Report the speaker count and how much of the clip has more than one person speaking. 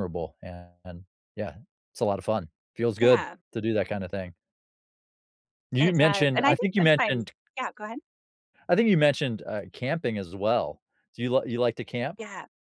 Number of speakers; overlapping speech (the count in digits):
2, about 13%